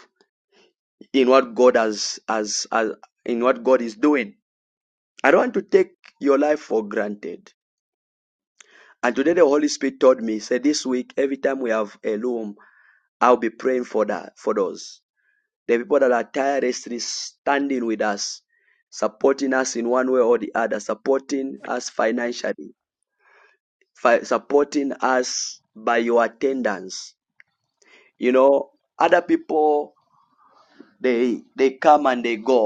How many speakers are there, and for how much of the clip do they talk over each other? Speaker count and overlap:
1, no overlap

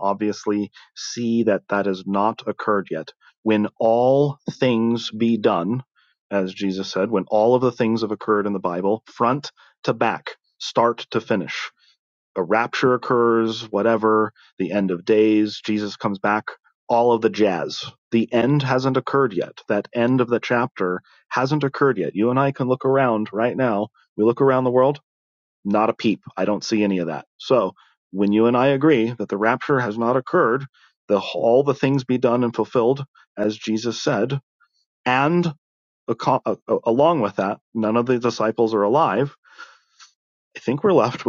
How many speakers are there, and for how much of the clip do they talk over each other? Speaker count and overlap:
1, no overlap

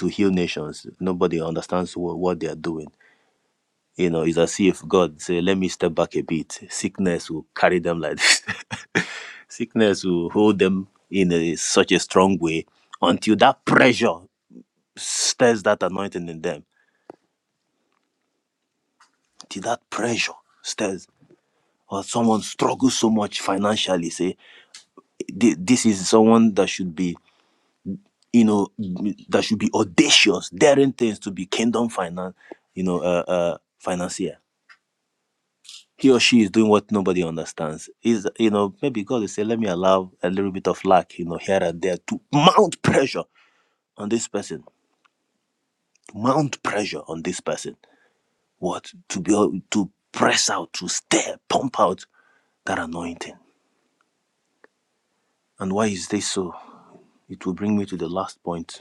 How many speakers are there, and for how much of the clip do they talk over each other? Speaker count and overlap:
1, no overlap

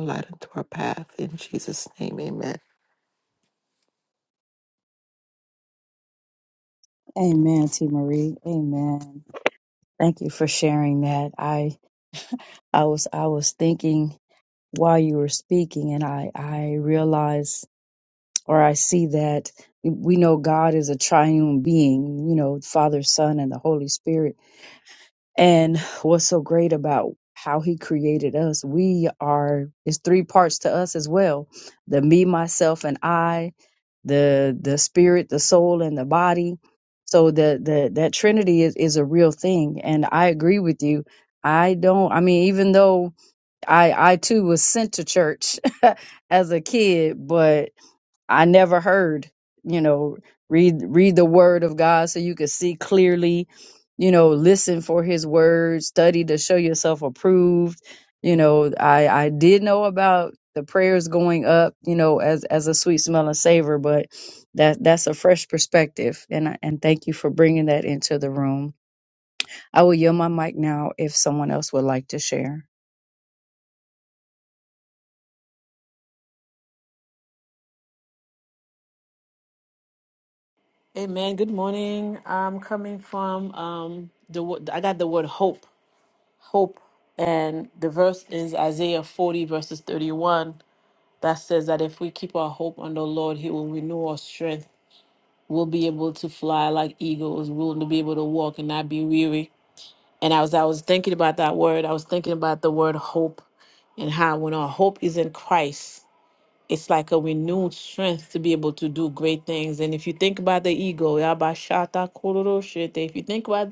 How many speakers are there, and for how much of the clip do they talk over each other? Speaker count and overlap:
3, no overlap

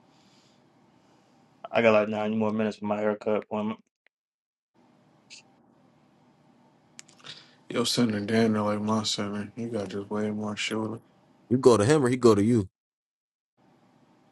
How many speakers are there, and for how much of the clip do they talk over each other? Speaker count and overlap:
3, no overlap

